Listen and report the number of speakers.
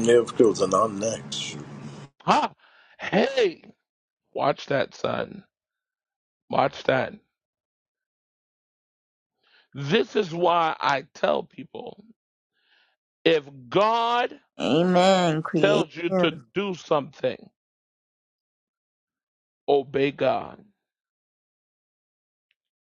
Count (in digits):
3